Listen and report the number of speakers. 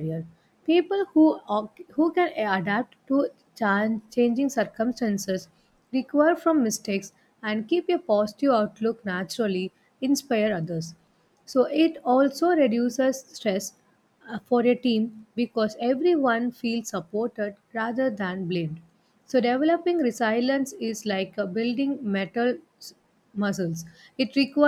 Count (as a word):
one